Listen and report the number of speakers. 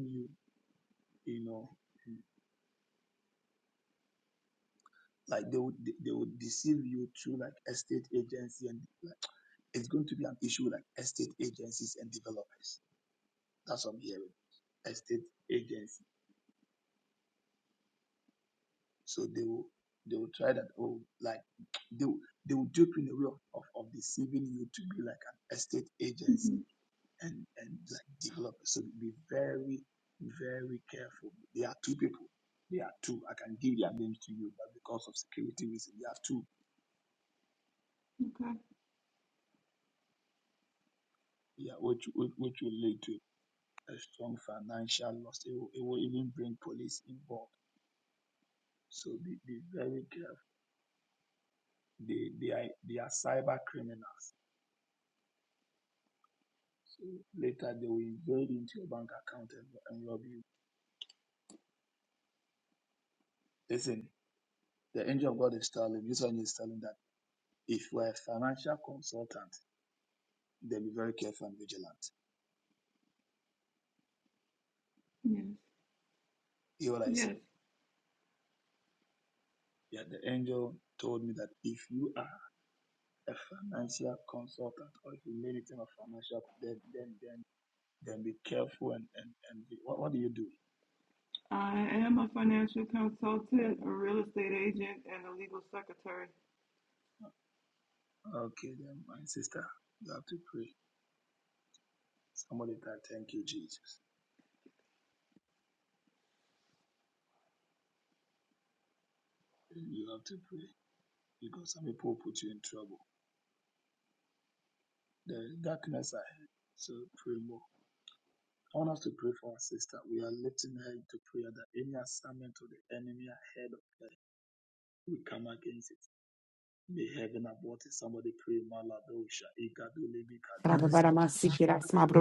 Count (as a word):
three